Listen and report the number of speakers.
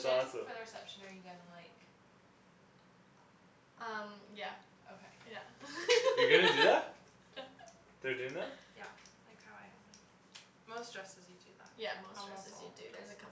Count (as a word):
three